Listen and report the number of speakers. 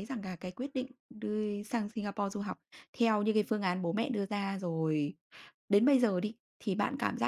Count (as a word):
one